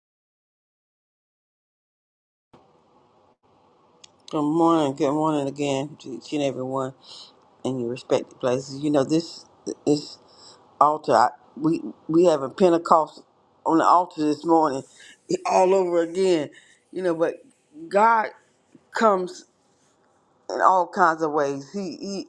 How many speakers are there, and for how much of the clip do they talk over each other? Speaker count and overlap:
one, no overlap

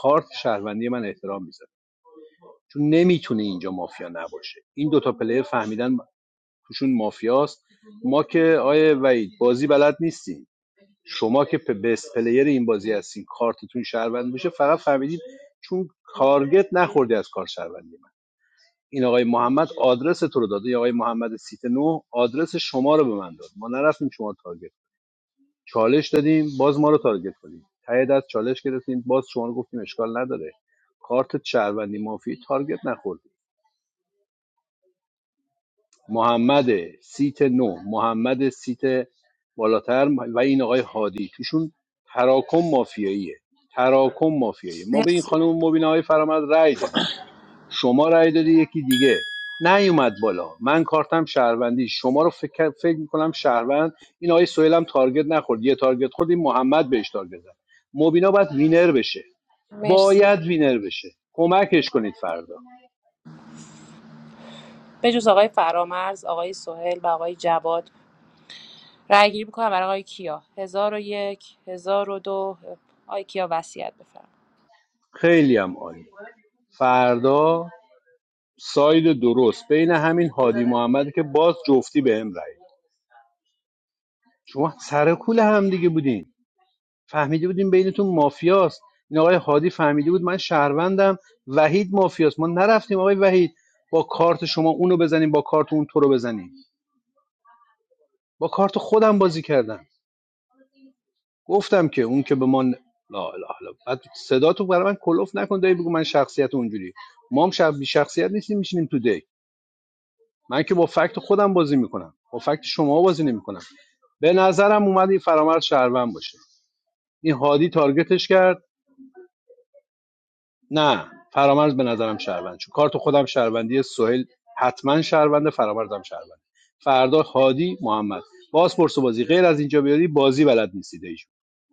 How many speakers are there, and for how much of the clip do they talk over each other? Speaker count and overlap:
two, about 1%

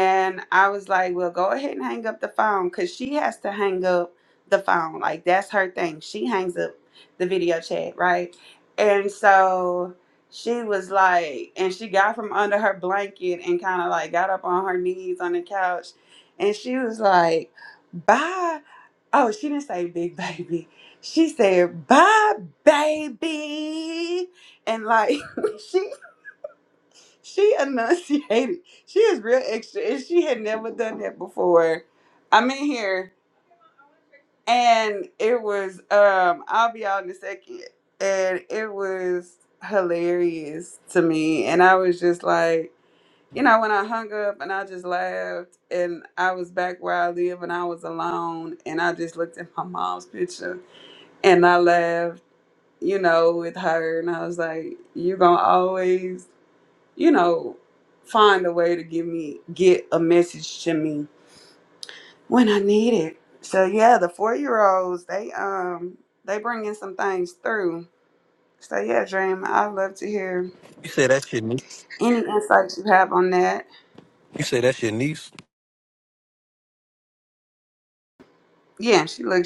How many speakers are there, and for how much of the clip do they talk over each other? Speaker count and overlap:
two, no overlap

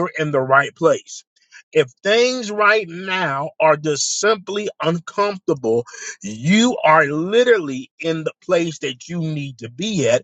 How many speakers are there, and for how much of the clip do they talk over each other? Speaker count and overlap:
one, no overlap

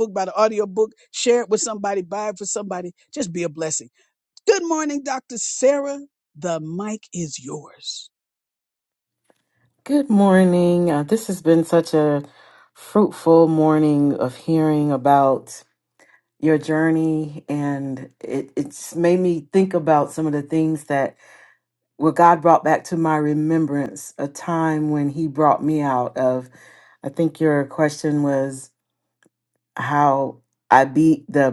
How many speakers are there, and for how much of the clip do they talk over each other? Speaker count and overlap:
two, no overlap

